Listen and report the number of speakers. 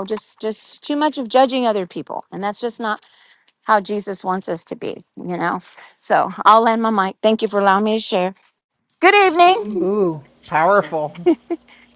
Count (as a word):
two